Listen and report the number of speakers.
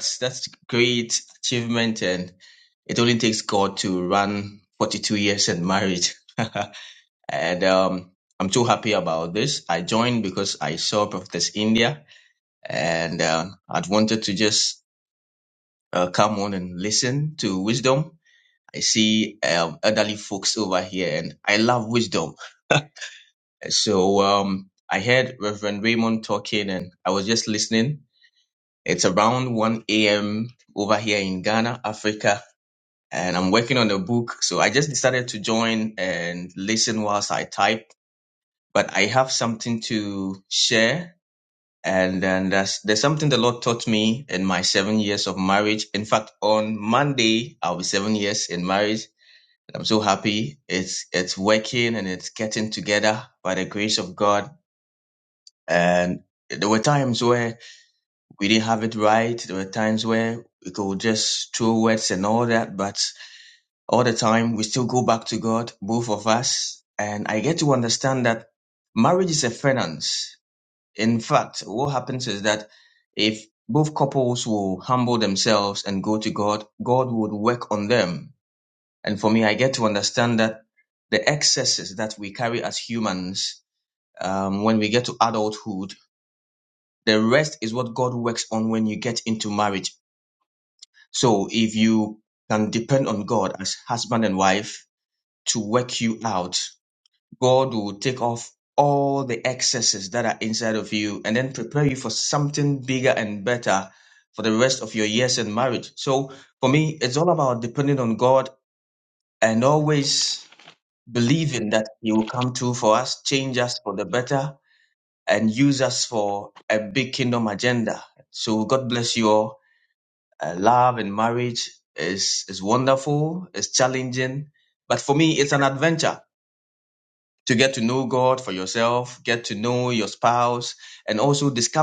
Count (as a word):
one